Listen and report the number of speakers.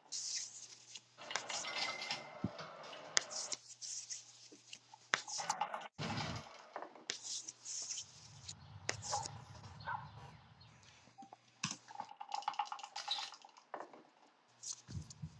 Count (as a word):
zero